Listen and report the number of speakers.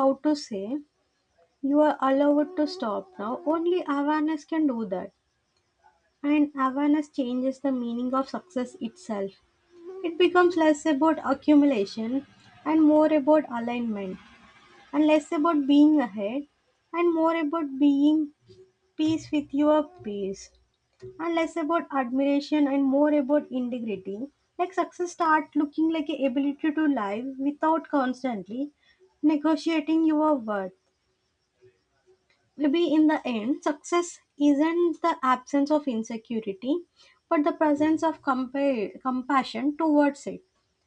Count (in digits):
1